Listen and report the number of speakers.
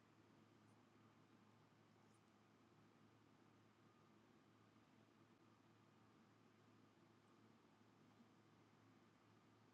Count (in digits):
0